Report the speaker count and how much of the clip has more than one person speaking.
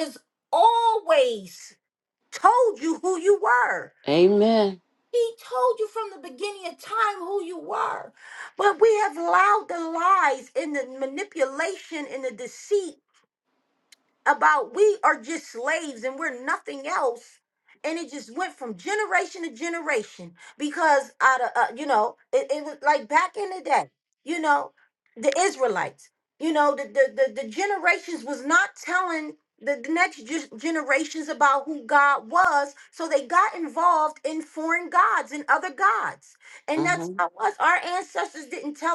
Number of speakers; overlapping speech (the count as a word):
two, about 1%